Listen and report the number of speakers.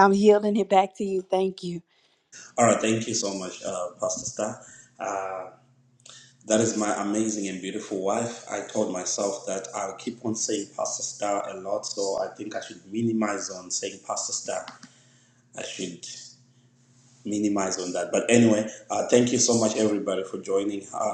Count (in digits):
2